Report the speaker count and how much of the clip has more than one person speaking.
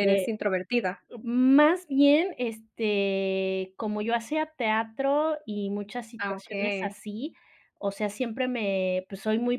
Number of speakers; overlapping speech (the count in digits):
2, about 11%